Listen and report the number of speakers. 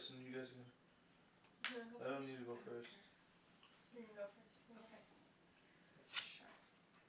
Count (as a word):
three